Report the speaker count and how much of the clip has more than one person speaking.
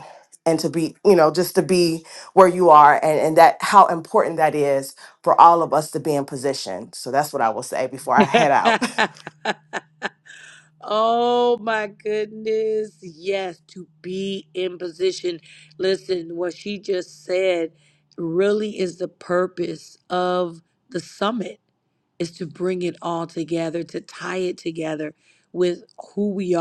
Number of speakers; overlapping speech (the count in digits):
2, about 1%